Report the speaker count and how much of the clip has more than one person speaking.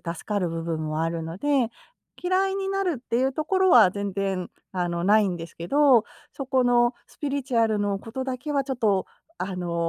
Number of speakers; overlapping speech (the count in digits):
1, no overlap